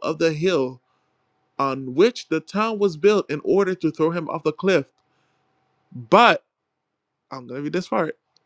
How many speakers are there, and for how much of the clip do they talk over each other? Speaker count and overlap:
1, no overlap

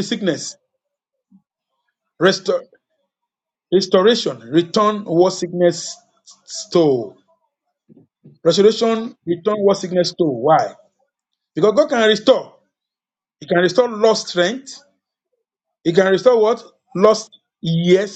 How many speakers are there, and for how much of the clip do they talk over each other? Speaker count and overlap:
1, no overlap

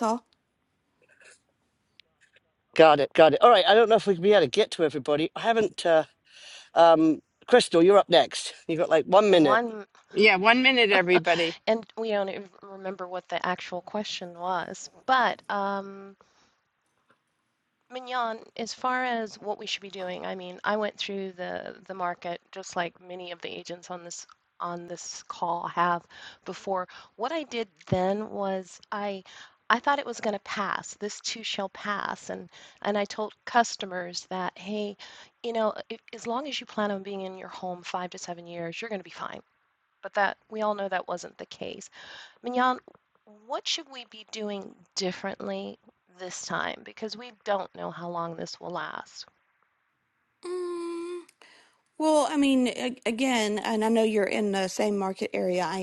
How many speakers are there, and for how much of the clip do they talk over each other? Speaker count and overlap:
4, about 1%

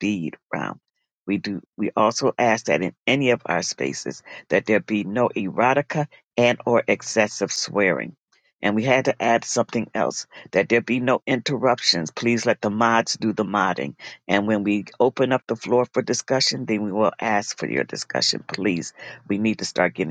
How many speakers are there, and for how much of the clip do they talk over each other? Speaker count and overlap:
1, no overlap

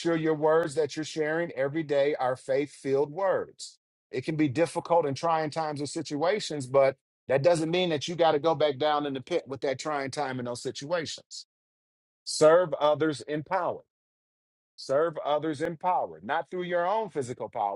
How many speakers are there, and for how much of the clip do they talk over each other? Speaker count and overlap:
1, no overlap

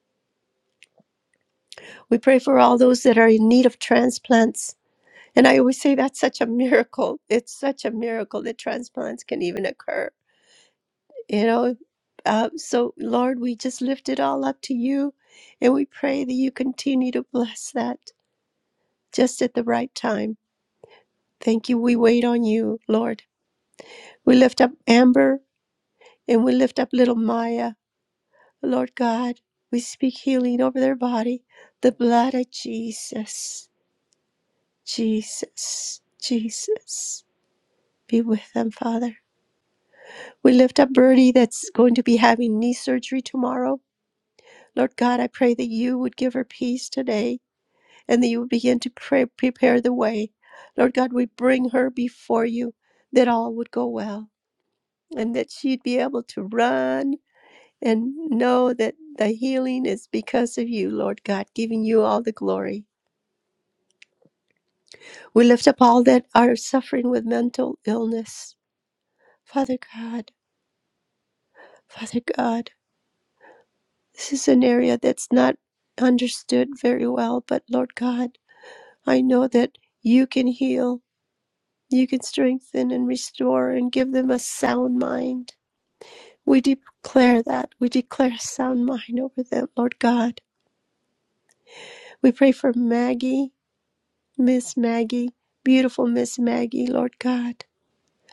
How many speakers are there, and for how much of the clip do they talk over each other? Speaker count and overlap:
1, no overlap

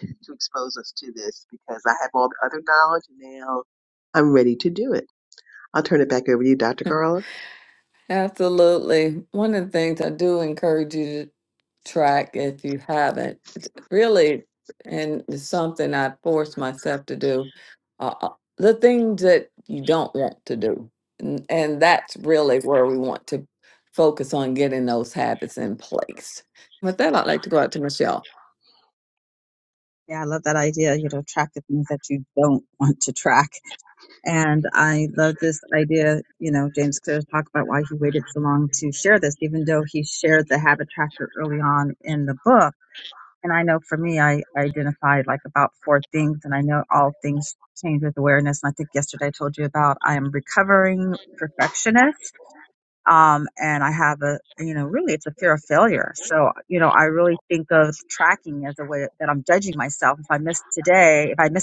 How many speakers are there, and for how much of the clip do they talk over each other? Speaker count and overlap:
3, no overlap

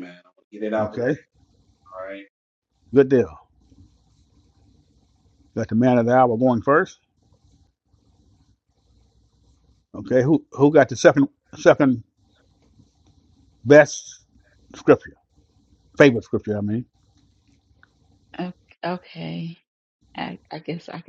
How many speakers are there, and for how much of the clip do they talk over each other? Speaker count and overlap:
3, about 1%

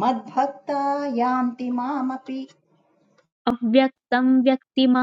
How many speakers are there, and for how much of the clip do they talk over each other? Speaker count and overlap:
2, no overlap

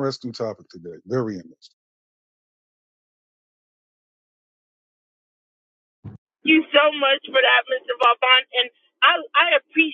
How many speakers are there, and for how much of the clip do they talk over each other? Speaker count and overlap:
2, no overlap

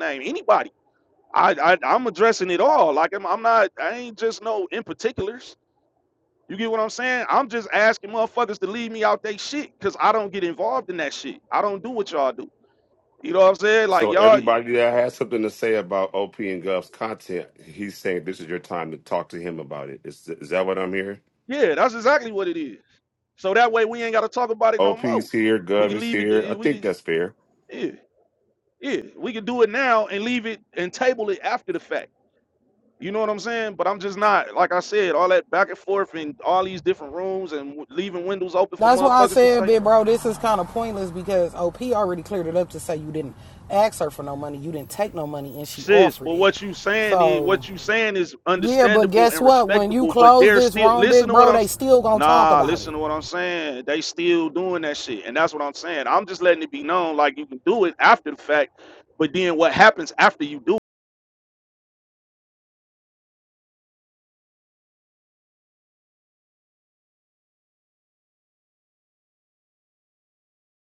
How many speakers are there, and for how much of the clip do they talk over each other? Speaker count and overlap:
3, about 11%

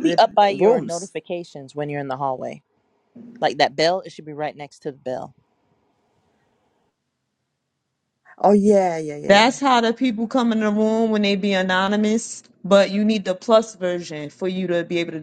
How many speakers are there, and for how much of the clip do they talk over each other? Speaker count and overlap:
3, about 8%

